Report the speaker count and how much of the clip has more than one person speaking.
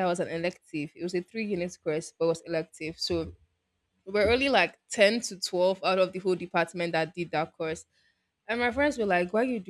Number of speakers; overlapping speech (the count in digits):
1, no overlap